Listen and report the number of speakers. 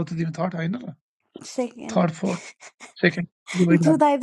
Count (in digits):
2